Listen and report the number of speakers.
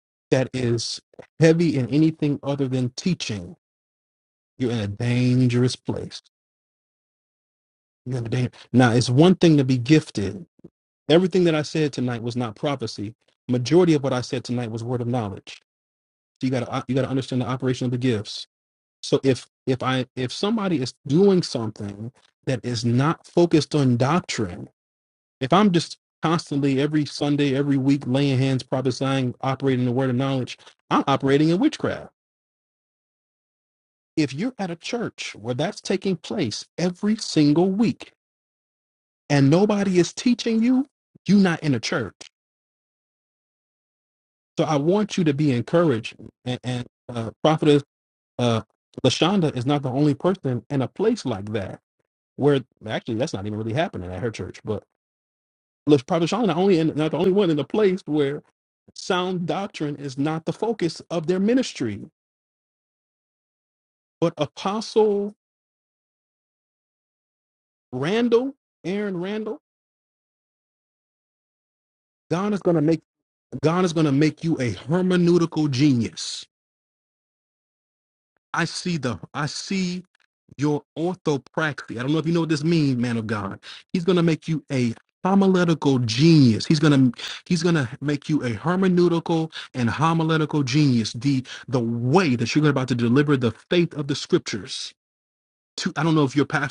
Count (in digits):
1